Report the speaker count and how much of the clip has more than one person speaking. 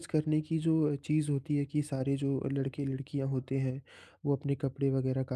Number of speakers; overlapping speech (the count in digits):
1, no overlap